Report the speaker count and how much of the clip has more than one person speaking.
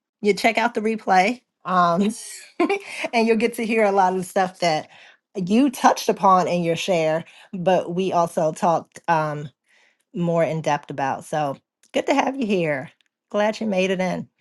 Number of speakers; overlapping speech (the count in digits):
1, no overlap